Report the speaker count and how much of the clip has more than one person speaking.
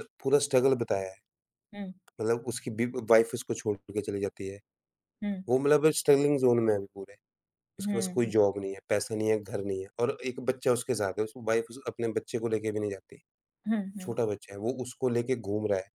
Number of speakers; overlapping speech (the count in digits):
2, about 4%